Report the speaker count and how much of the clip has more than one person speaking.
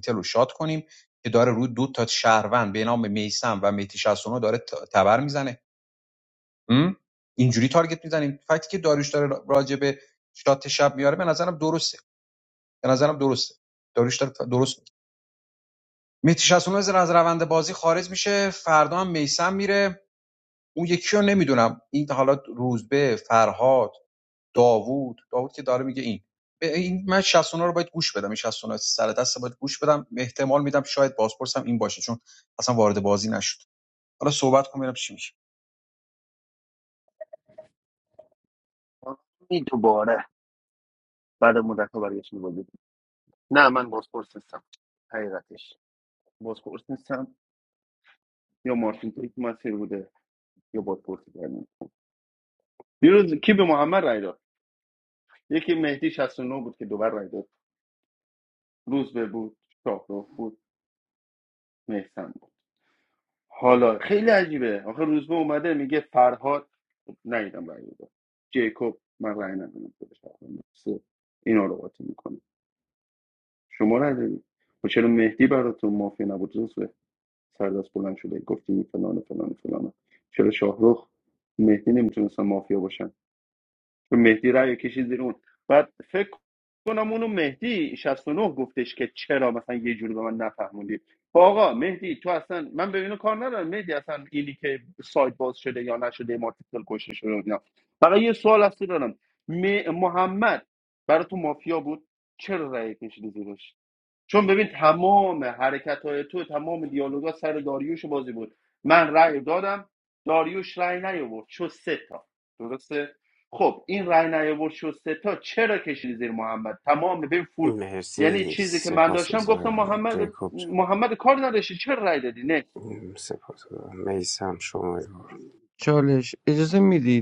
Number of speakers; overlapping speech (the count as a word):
four, about 2%